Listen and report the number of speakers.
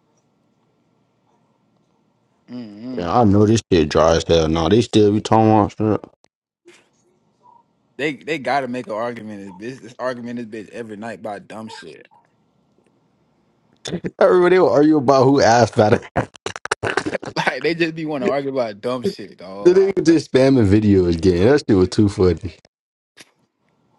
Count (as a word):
two